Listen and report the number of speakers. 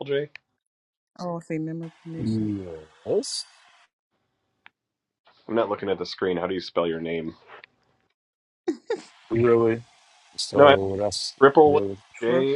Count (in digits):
3